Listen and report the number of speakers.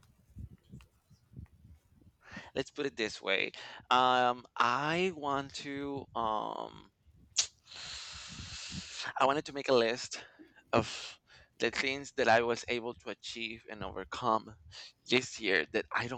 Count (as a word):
one